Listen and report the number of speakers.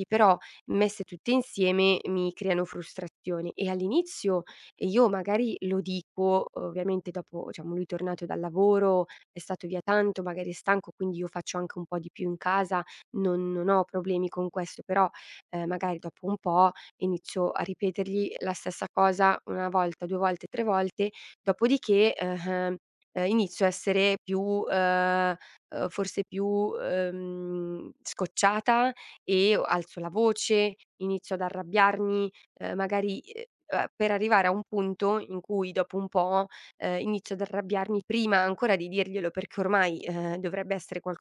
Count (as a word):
one